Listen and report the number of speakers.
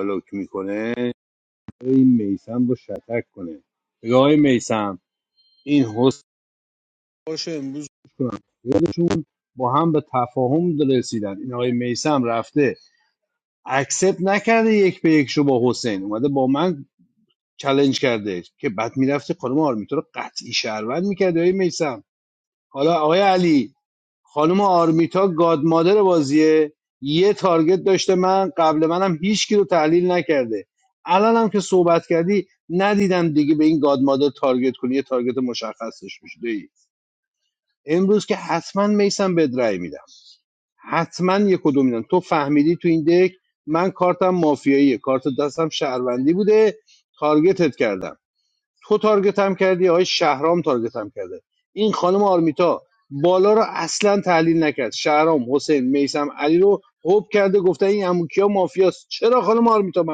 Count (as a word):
one